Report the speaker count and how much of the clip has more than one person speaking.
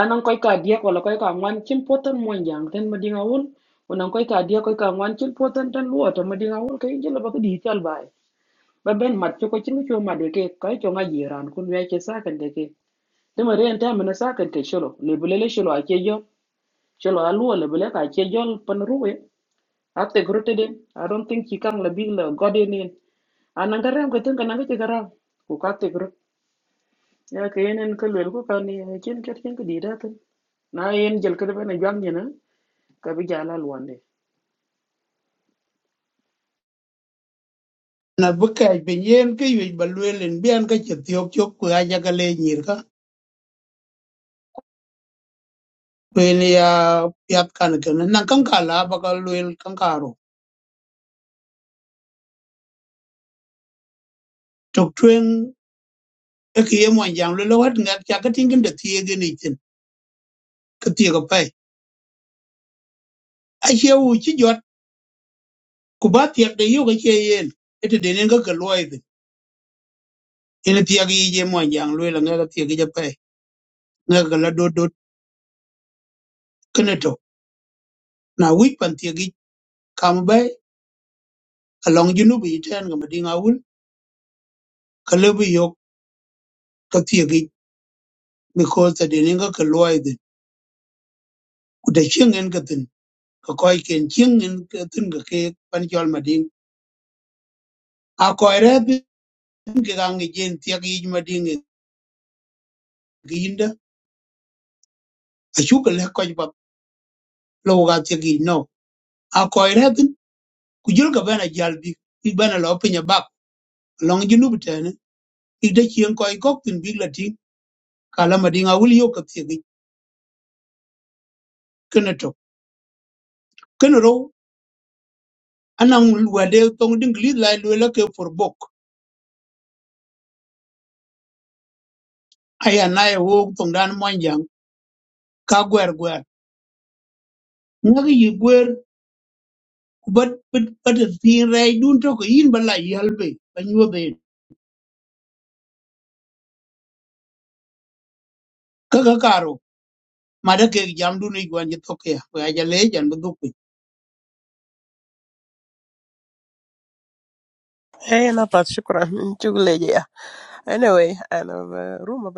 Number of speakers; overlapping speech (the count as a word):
three, no overlap